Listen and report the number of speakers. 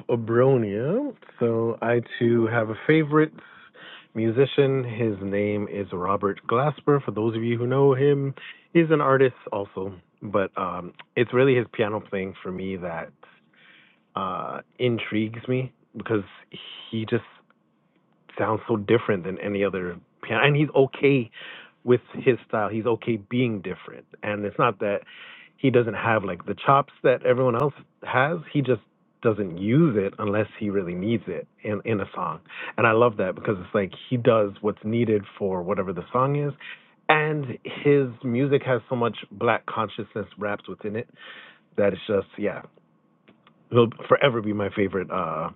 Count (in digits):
1